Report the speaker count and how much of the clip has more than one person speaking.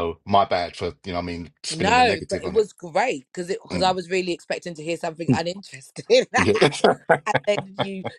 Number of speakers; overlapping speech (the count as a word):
two, about 16%